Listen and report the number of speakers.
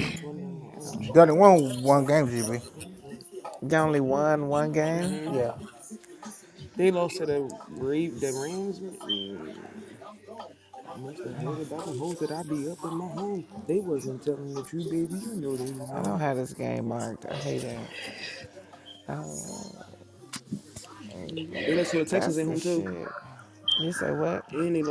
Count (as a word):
three